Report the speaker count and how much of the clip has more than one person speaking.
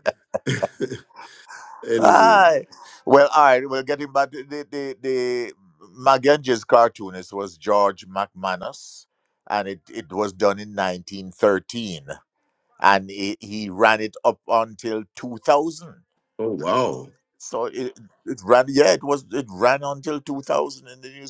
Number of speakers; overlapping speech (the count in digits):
2, about 2%